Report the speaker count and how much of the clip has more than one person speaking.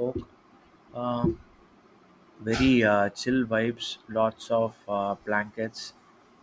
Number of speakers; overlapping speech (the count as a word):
one, no overlap